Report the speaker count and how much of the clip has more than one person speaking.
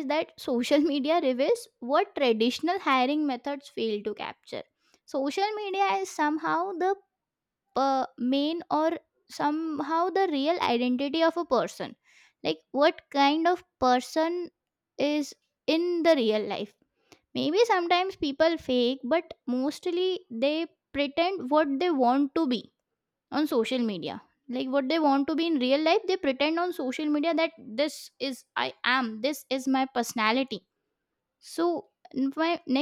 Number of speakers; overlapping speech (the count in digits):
1, no overlap